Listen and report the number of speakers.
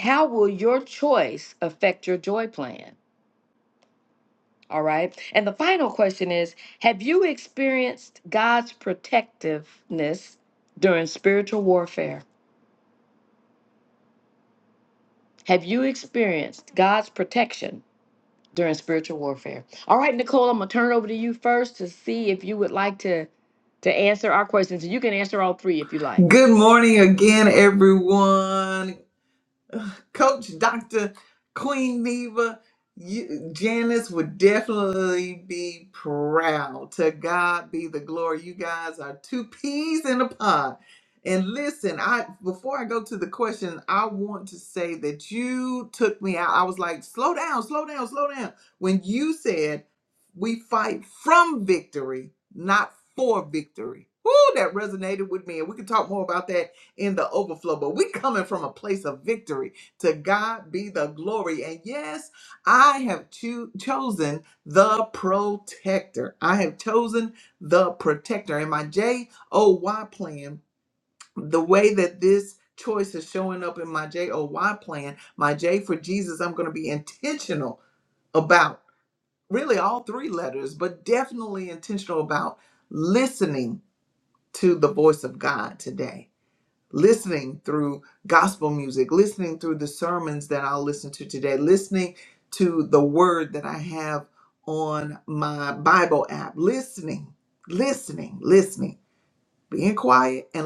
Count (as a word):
two